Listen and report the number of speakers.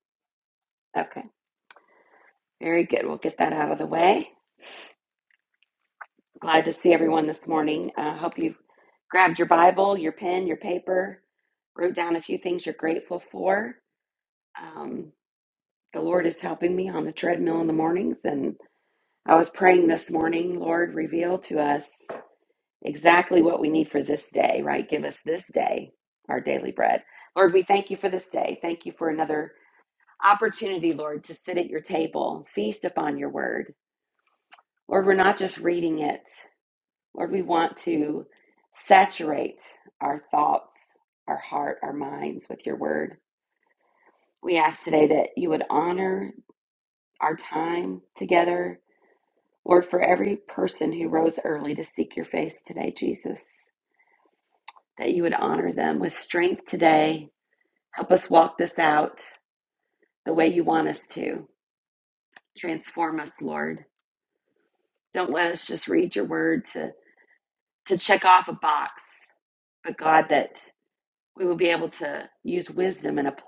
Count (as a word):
one